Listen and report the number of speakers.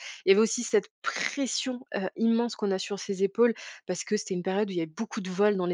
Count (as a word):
one